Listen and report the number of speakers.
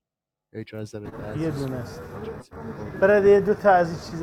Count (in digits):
2